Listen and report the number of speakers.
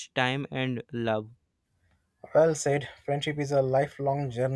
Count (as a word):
two